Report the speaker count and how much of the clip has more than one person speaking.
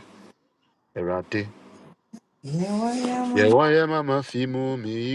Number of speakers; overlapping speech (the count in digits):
2, about 2%